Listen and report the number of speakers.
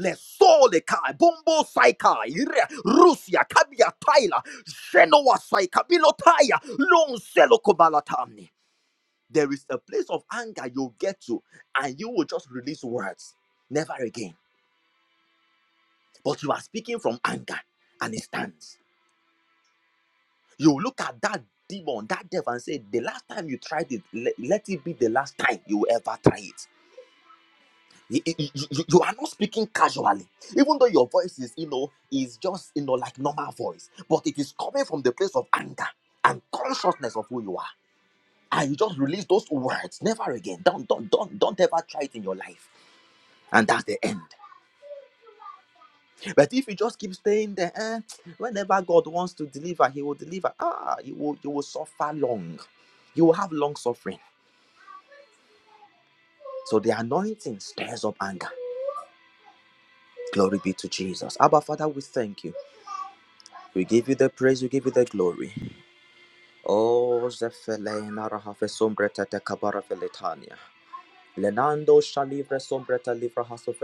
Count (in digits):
1